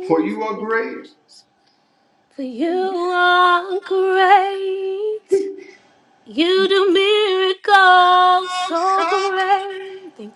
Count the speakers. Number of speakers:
two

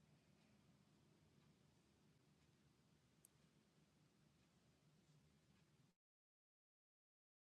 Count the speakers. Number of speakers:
zero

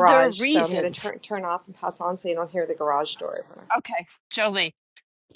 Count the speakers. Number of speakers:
two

